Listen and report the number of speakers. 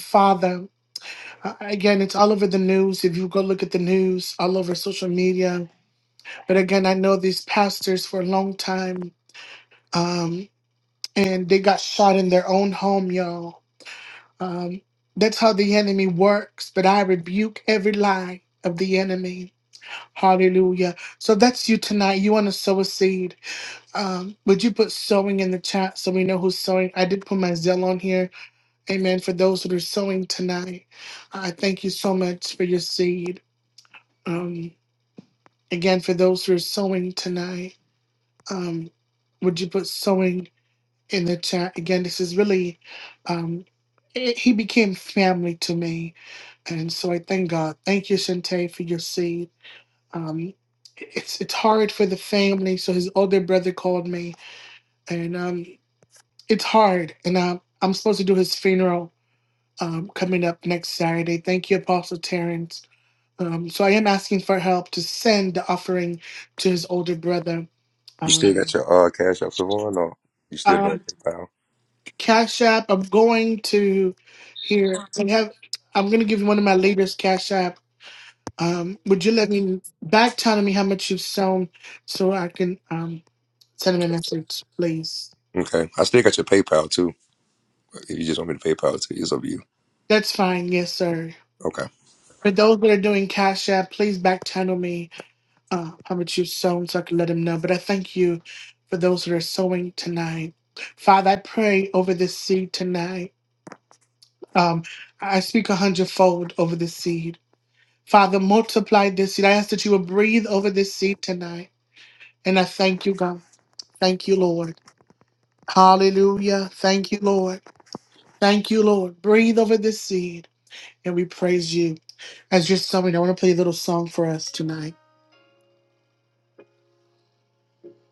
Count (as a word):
two